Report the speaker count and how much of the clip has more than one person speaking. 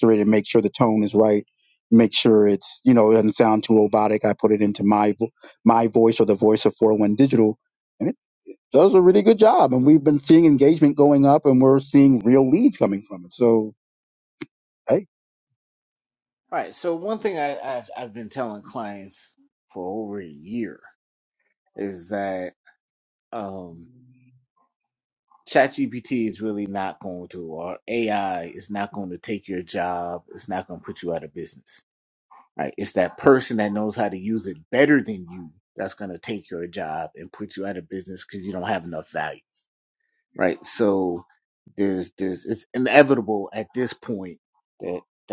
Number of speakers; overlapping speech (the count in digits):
2, no overlap